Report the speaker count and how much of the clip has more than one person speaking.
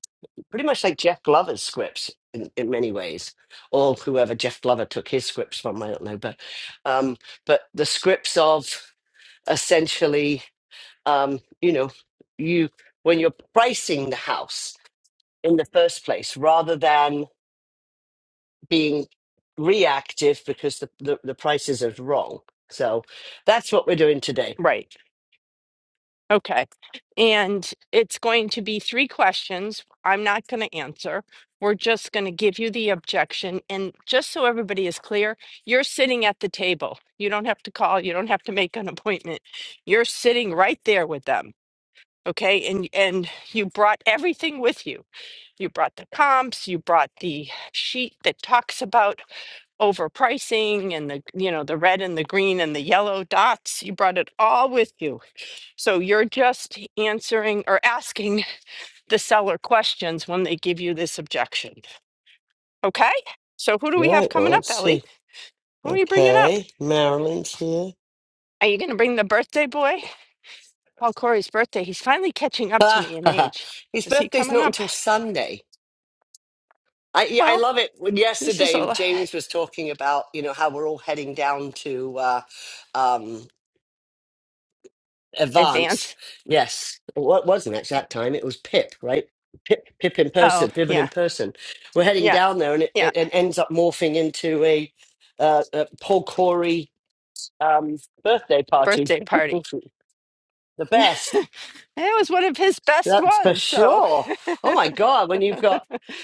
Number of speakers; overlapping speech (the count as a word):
two, about 6%